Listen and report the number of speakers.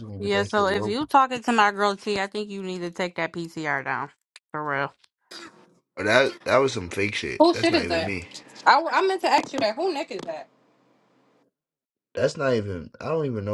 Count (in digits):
3